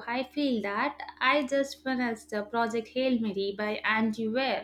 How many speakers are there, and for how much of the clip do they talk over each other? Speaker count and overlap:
1, no overlap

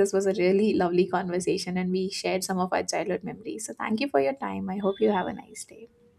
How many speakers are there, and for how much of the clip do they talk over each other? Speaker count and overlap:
1, no overlap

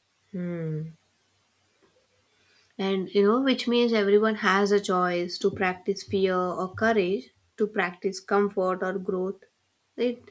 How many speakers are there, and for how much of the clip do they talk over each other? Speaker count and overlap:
1, no overlap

